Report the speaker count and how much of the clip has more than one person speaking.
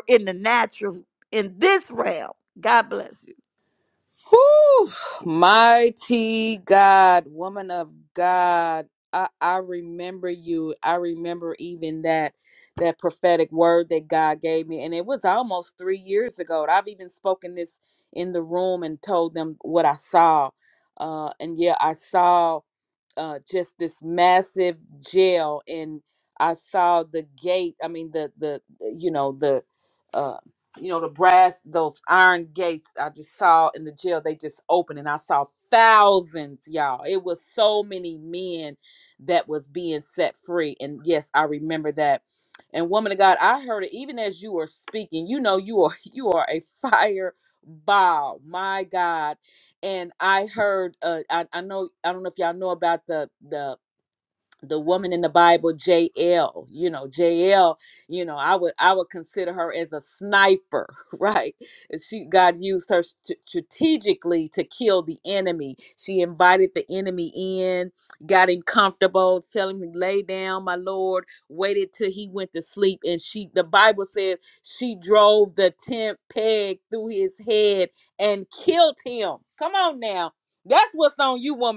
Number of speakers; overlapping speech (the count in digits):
2, no overlap